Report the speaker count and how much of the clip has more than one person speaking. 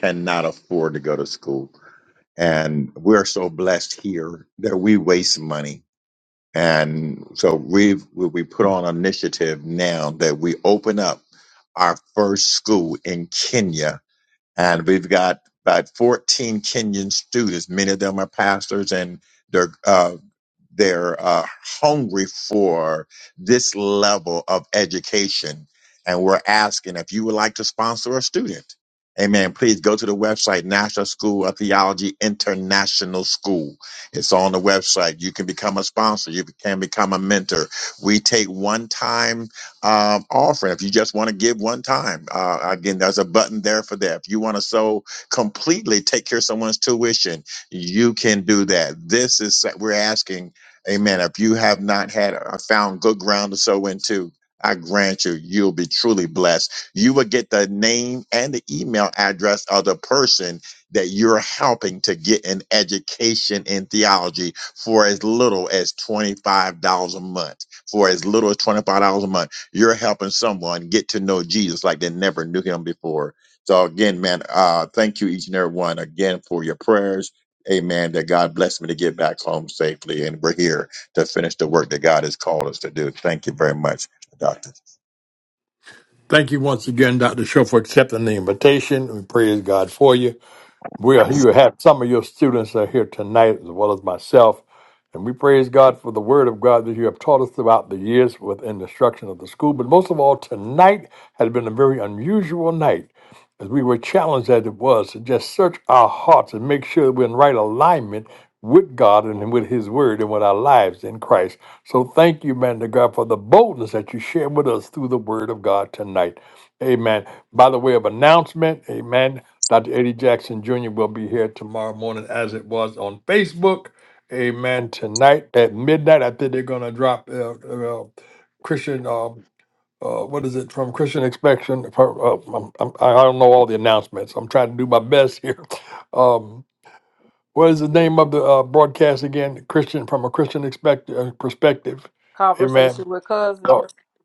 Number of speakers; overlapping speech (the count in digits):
3, under 1%